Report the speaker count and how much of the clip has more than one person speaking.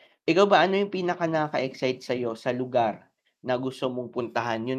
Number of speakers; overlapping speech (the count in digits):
1, no overlap